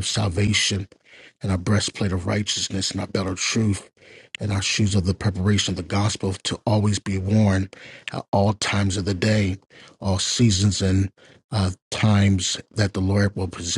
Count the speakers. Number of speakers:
one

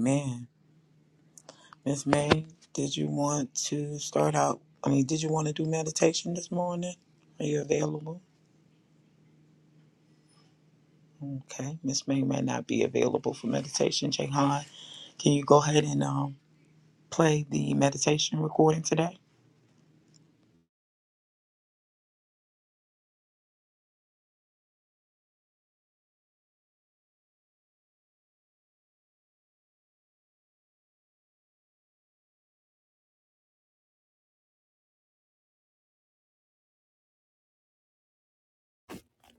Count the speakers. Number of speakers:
one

